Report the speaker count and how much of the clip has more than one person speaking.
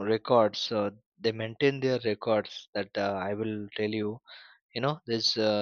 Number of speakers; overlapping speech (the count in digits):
1, no overlap